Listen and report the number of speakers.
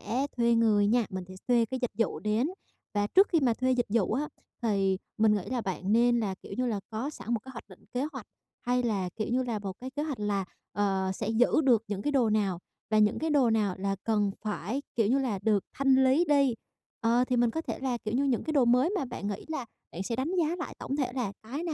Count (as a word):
one